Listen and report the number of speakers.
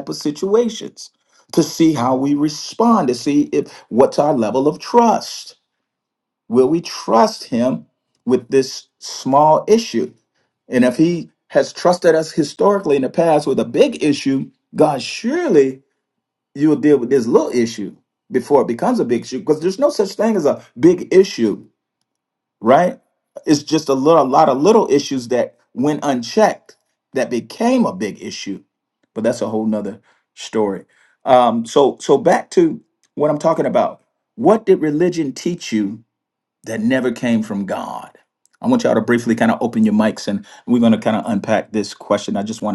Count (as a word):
one